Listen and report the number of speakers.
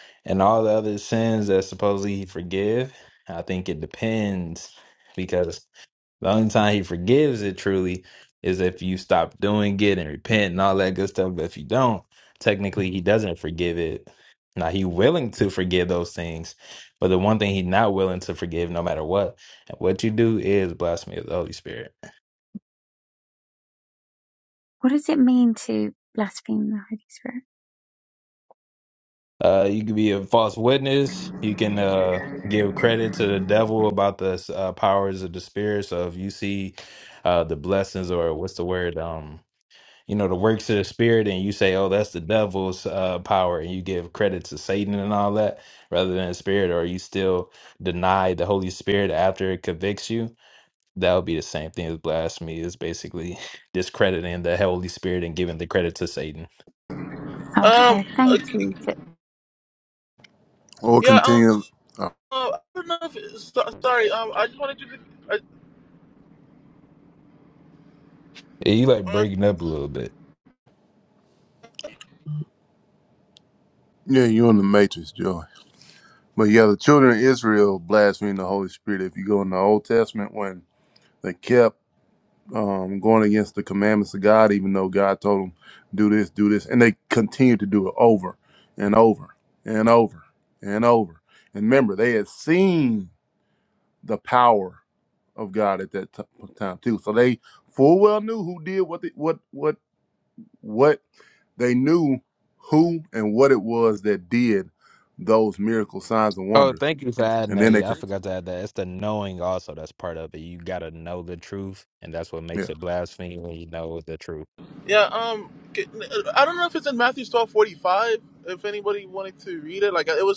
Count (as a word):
four